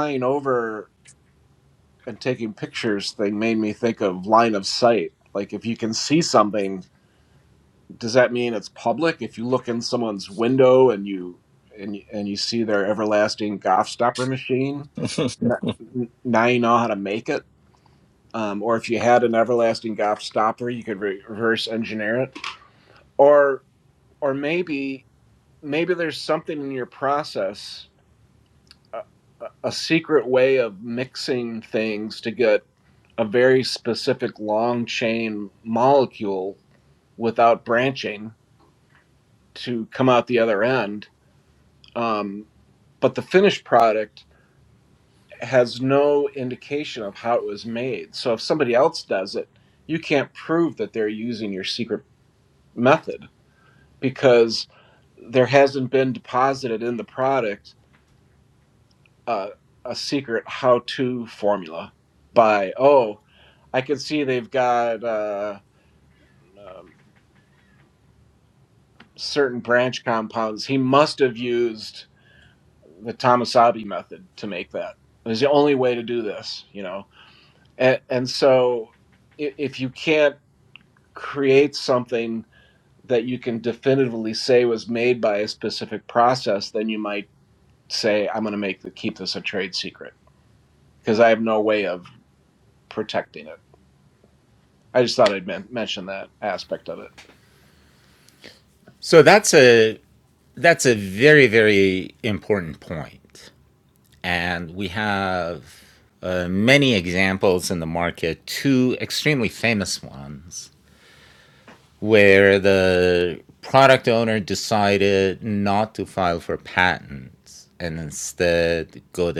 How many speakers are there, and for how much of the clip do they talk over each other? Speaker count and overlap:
2, no overlap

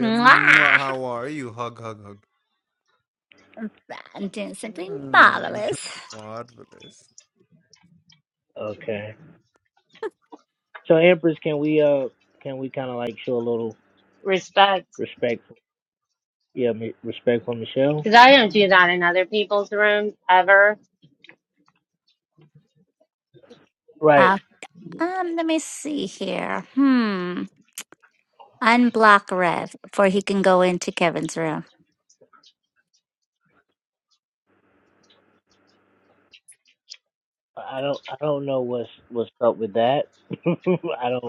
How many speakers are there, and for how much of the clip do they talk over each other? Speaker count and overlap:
4, about 4%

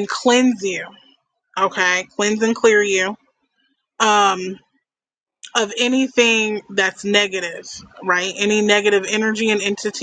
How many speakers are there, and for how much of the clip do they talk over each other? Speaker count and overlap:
1, no overlap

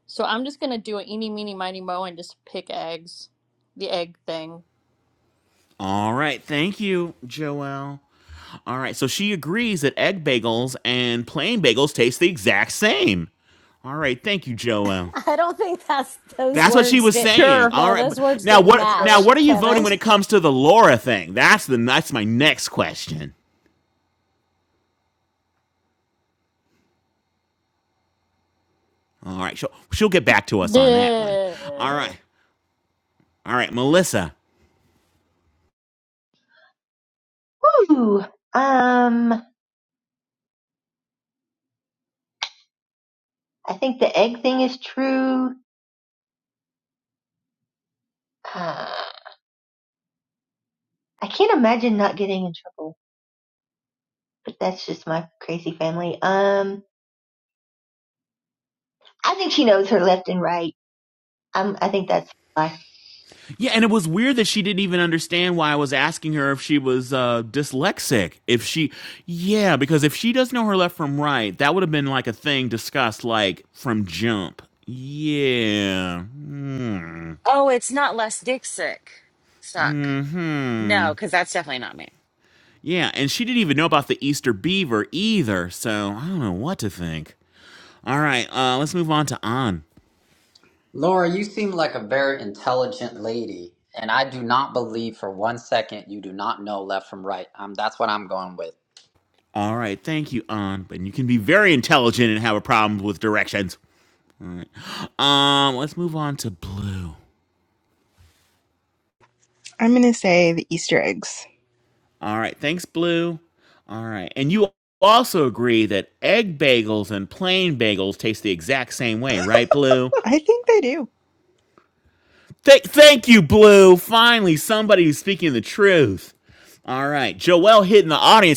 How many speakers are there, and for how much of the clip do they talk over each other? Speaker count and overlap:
7, about 4%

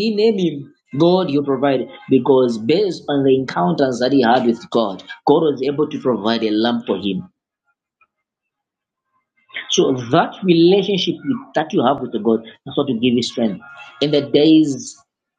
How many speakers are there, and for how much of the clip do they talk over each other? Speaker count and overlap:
1, no overlap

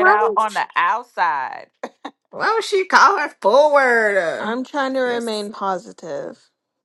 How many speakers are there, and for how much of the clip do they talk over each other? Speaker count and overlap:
3, about 9%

